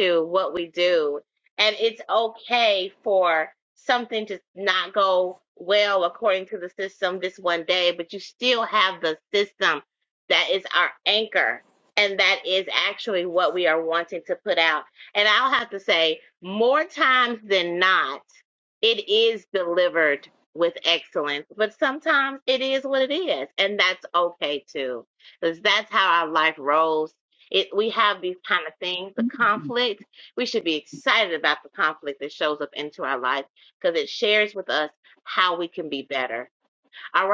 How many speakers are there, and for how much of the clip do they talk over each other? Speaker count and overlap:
1, no overlap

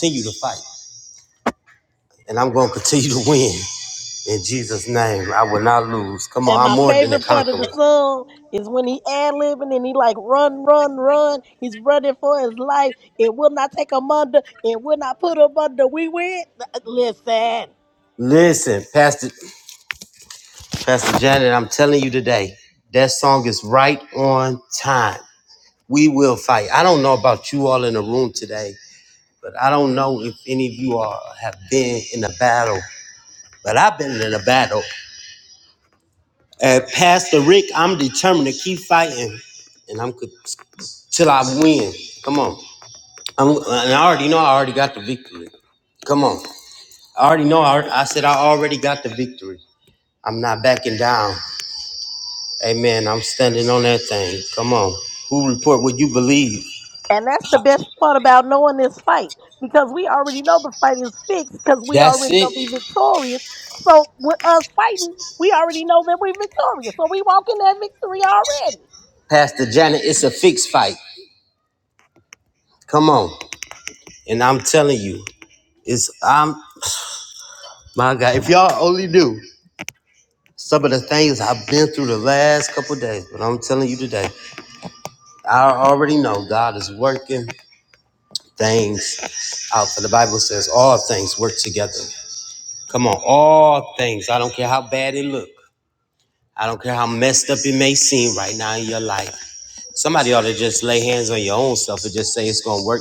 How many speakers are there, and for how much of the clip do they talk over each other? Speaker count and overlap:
2, about 2%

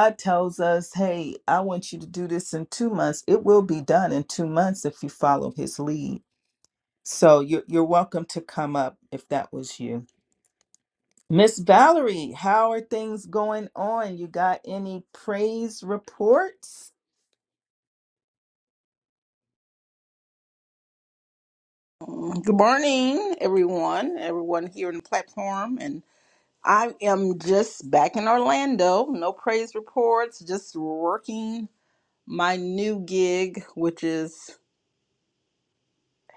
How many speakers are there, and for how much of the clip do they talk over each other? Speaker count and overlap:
2, no overlap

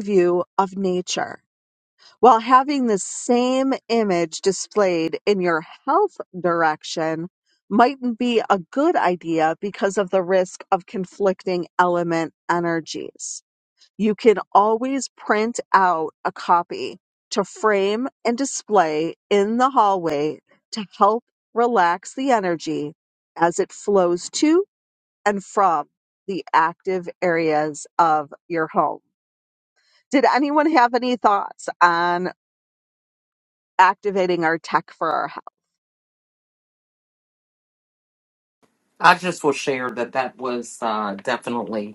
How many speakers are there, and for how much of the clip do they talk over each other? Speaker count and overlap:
2, no overlap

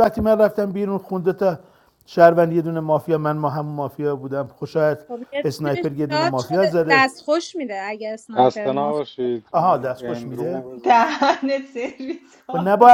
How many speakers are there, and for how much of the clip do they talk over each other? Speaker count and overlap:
4, about 32%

